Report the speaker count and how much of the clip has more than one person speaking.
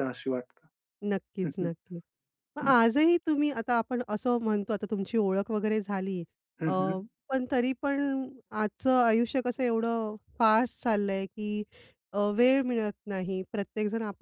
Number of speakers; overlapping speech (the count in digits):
2, about 3%